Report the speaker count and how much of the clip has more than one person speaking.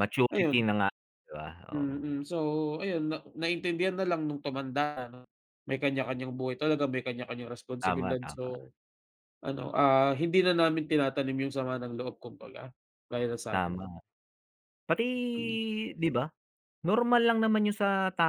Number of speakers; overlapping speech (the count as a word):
two, about 9%